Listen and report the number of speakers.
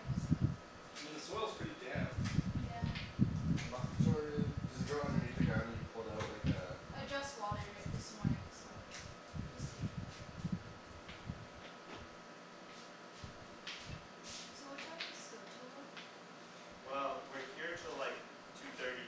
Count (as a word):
four